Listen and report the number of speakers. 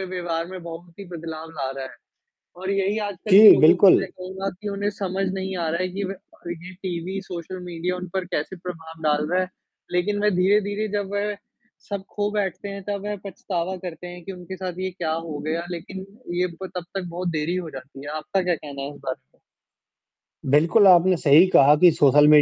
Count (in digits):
2